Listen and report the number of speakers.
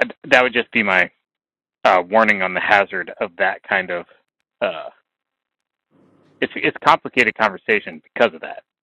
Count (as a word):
one